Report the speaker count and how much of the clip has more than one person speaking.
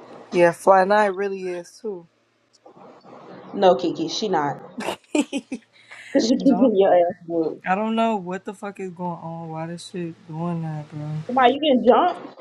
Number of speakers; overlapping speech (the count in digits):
2, about 3%